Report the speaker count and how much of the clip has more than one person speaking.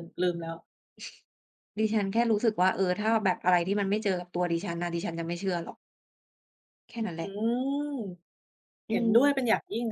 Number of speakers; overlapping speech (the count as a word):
two, about 5%